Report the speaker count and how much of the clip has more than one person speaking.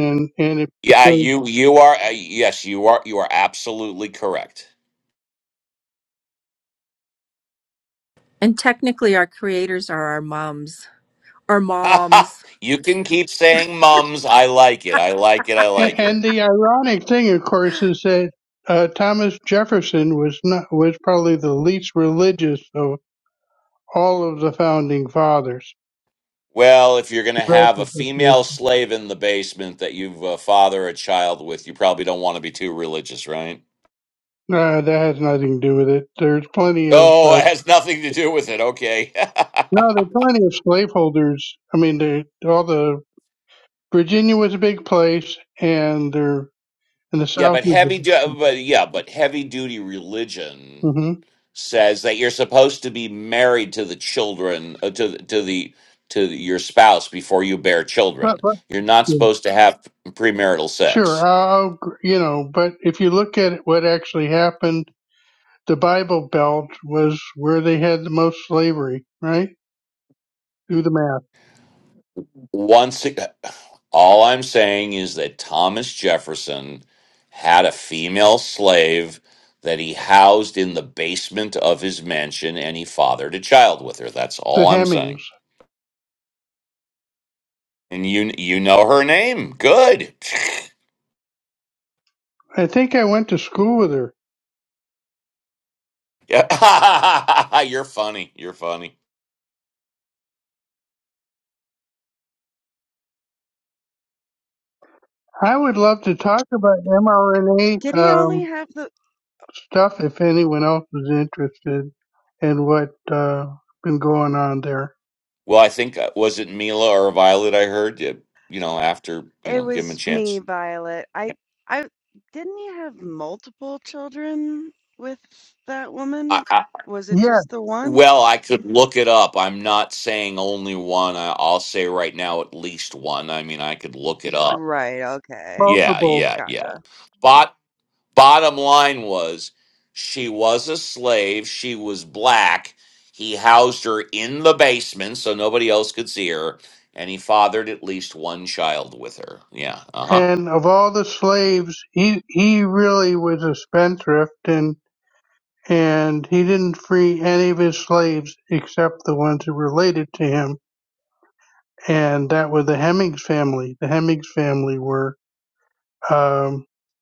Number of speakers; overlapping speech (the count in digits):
4, about 4%